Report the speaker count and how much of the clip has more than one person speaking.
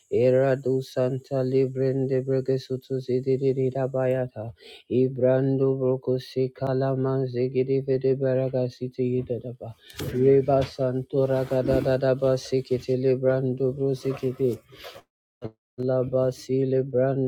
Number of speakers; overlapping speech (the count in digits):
1, no overlap